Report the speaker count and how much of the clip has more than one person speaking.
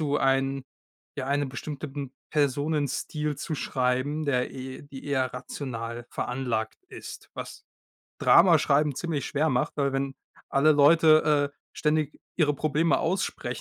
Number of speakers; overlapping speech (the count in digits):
1, no overlap